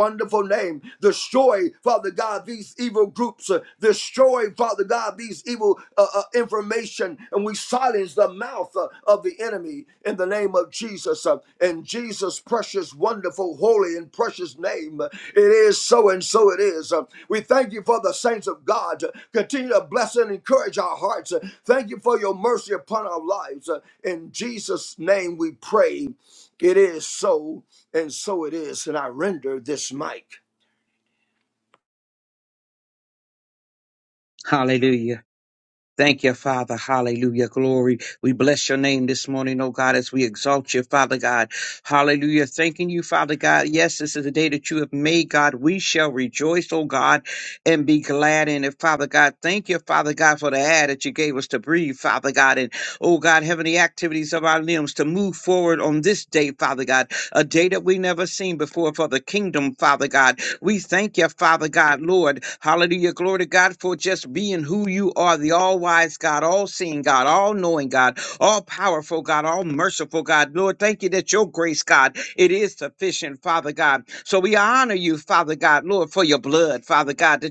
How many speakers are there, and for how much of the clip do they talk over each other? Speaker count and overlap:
2, no overlap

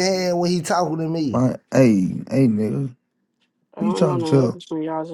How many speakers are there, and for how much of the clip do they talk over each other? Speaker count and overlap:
3, about 16%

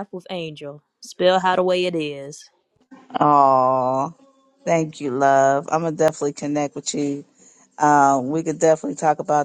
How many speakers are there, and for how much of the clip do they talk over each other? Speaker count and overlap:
2, no overlap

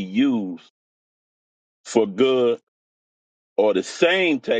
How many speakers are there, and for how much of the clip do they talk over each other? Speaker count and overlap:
1, no overlap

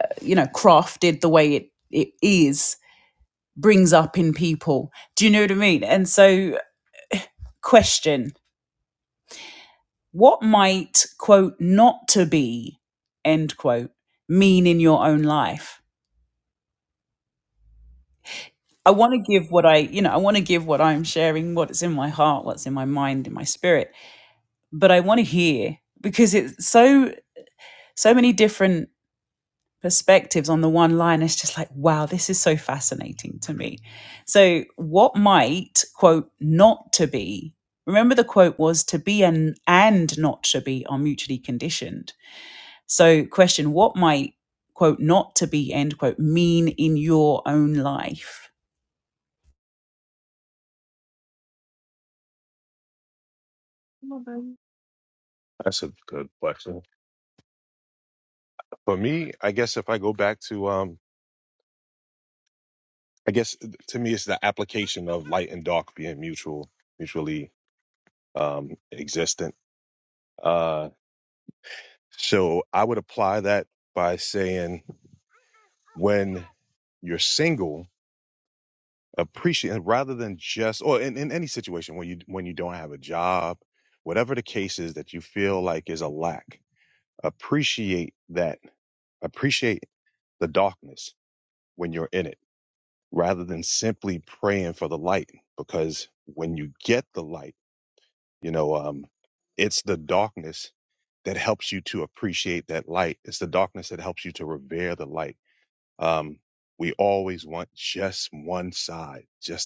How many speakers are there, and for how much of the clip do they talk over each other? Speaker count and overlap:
2, no overlap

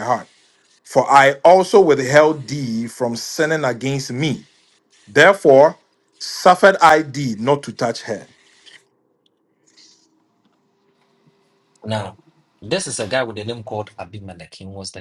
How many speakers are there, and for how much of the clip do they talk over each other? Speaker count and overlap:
2, no overlap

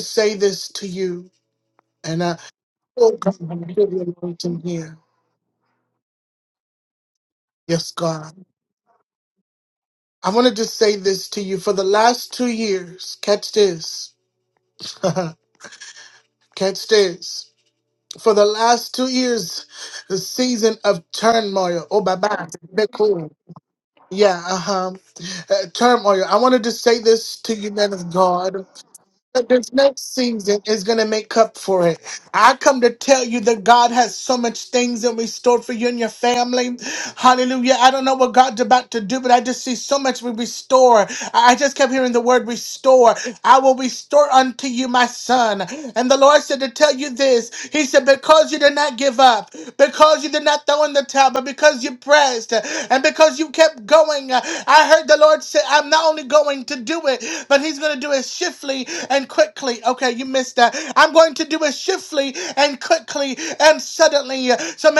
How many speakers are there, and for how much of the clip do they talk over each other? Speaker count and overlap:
1, no overlap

